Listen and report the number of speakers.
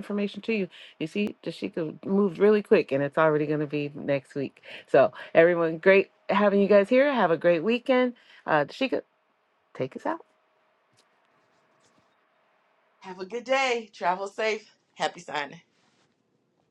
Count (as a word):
two